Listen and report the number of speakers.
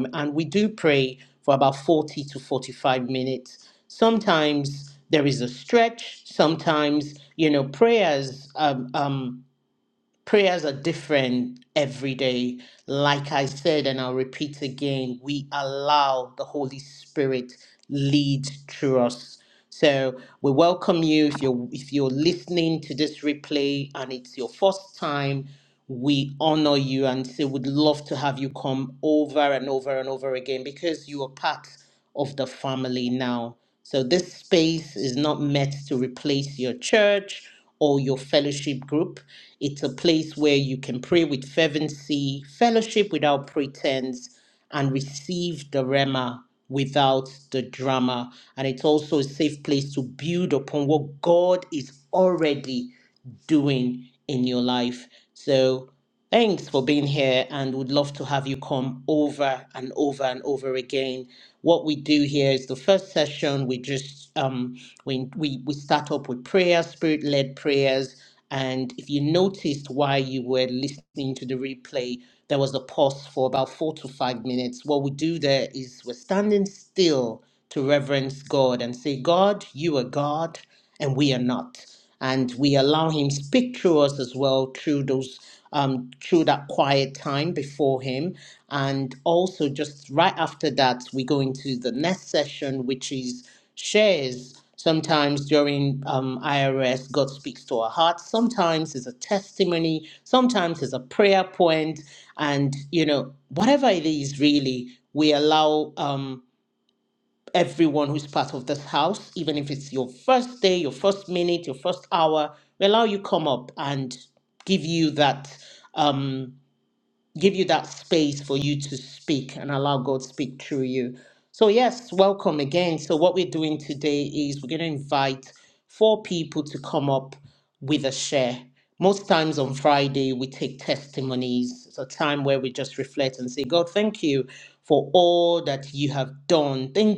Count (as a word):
one